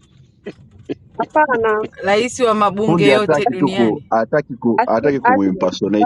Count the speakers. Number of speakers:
3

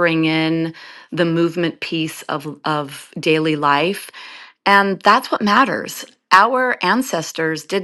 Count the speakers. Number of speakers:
1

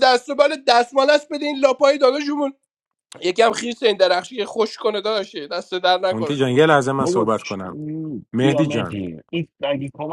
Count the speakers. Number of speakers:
3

